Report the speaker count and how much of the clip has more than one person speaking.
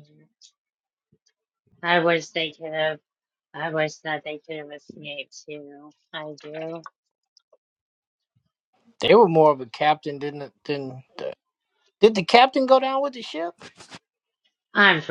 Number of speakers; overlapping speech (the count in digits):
2, no overlap